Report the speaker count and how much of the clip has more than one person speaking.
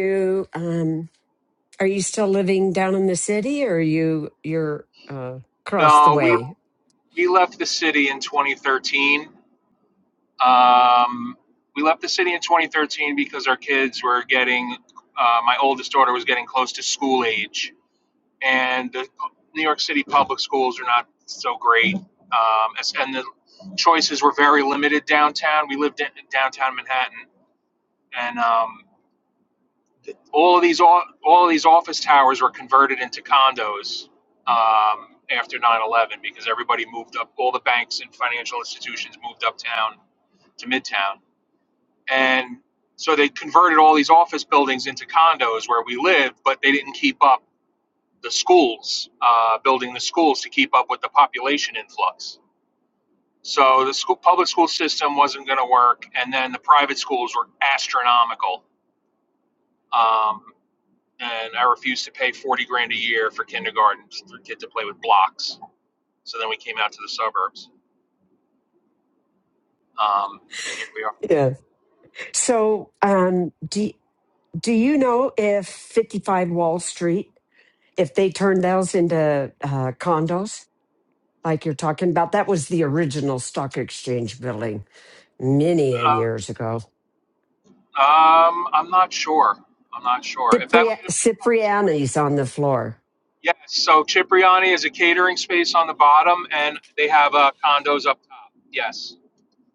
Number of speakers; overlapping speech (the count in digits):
2, about 2%